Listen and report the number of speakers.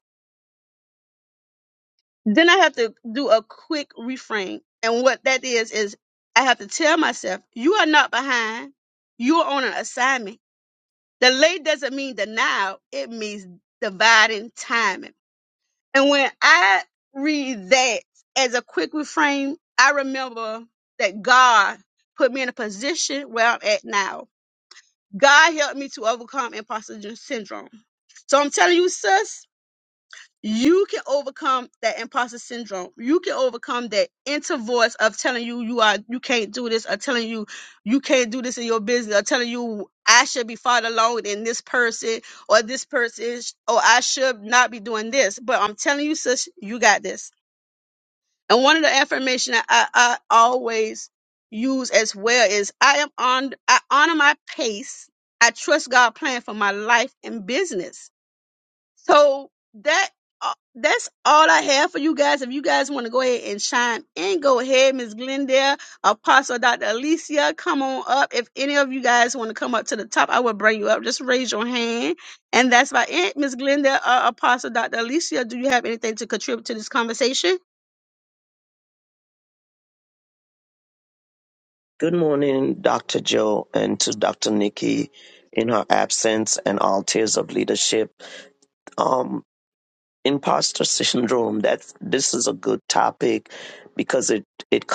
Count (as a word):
two